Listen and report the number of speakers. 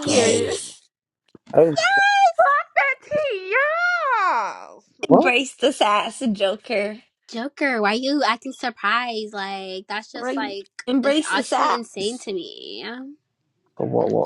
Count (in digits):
4